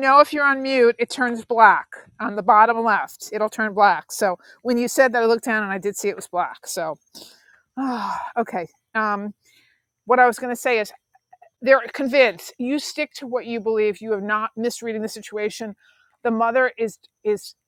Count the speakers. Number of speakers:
one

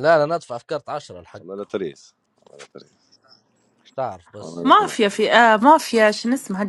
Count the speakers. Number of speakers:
three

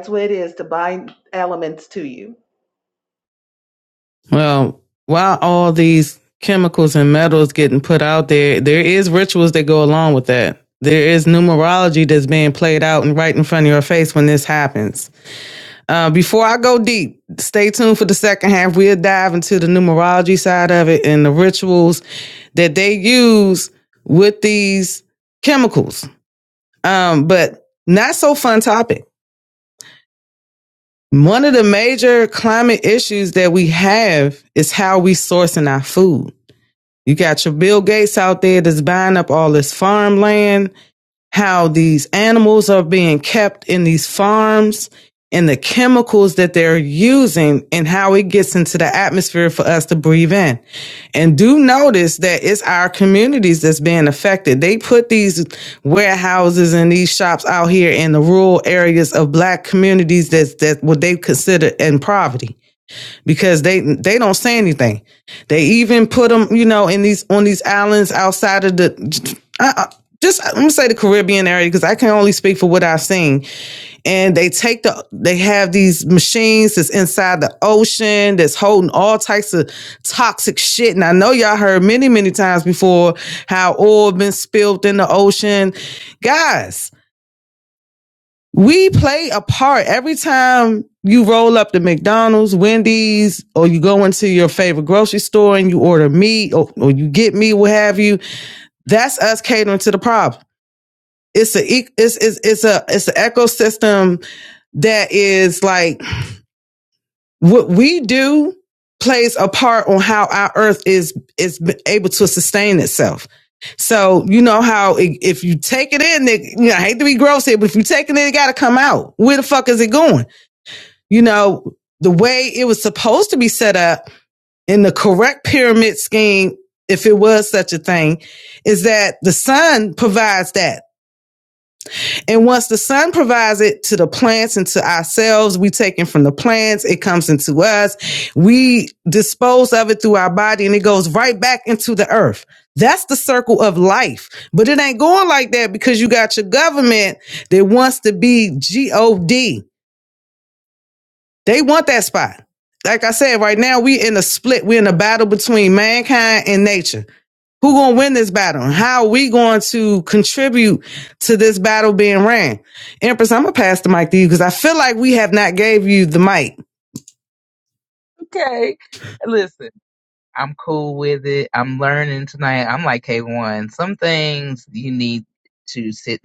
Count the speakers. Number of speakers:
three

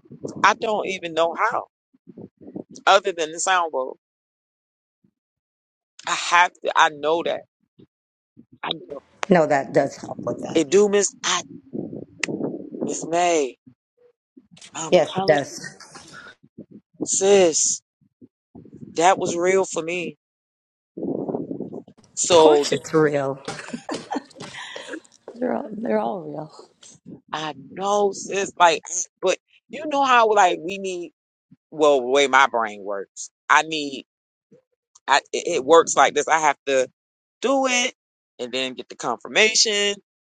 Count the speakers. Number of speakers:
two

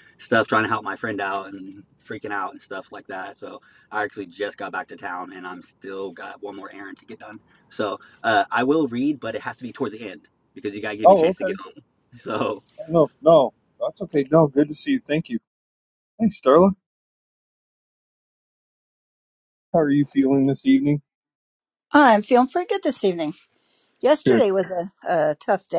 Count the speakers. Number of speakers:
three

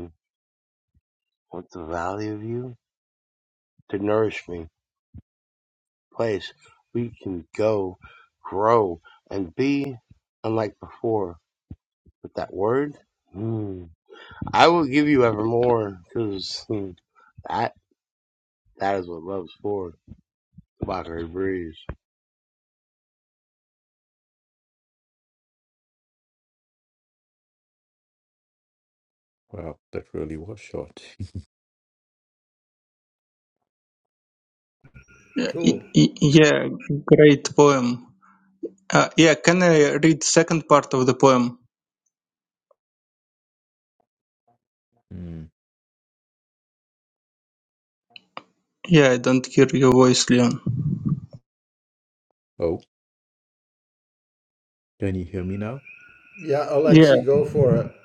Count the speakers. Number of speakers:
four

